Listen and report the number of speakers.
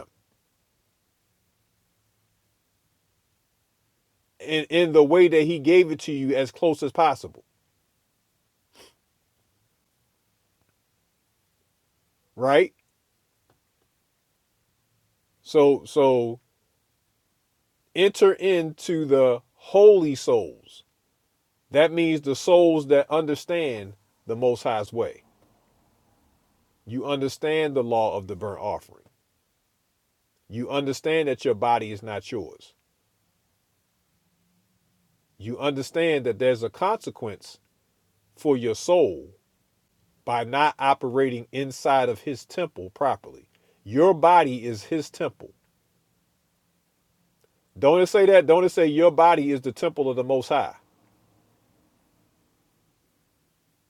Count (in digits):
1